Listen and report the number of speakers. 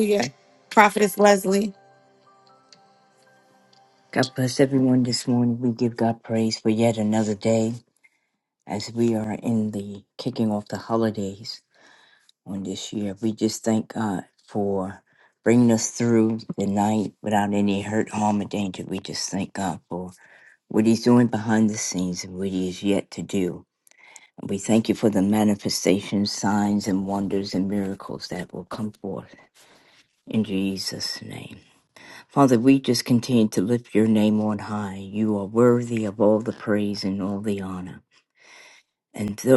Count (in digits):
2